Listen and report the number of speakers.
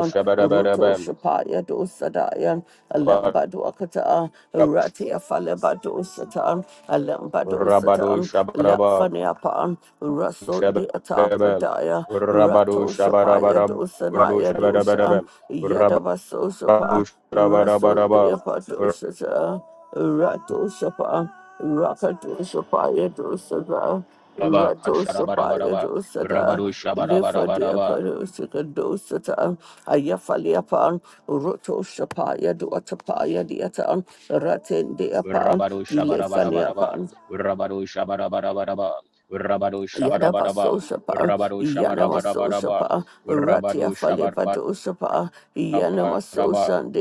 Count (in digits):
2